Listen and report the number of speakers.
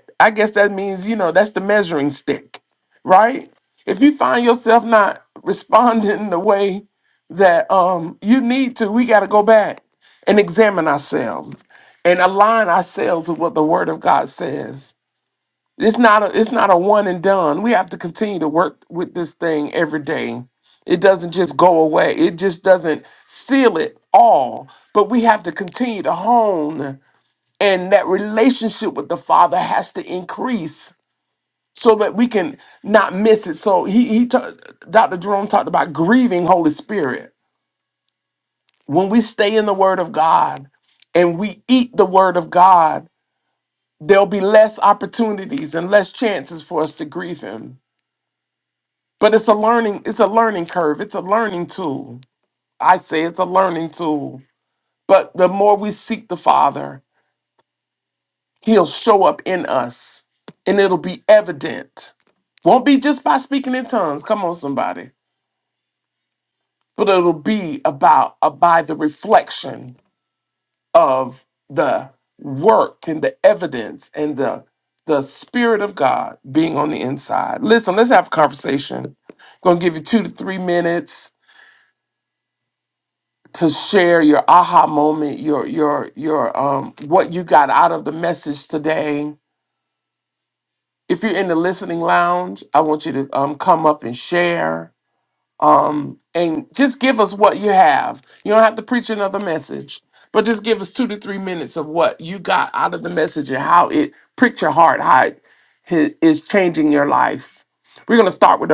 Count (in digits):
1